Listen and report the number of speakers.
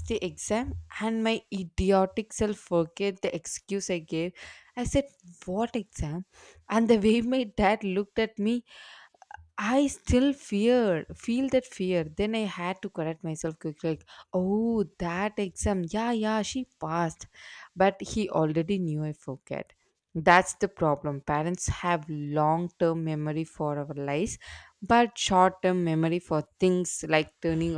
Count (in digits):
1